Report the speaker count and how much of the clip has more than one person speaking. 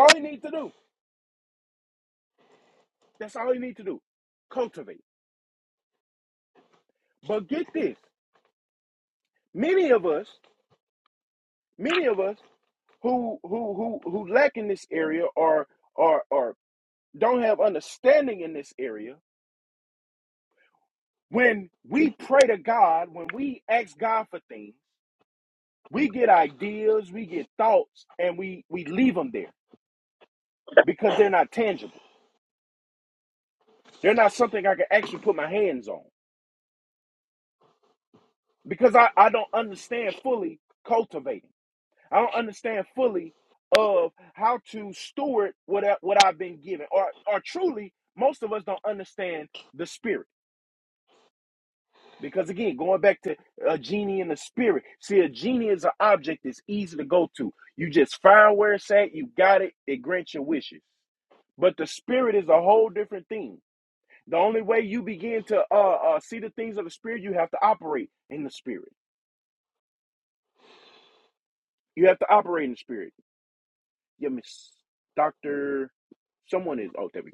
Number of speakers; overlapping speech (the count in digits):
1, no overlap